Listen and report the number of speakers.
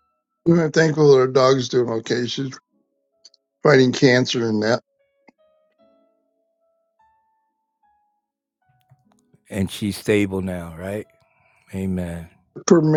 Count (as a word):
two